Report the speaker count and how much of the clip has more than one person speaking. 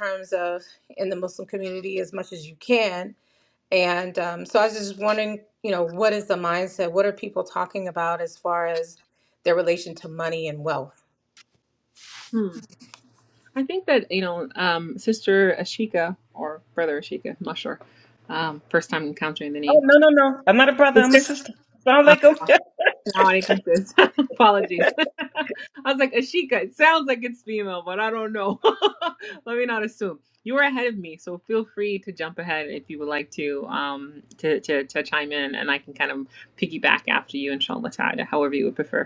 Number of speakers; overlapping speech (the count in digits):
3, about 1%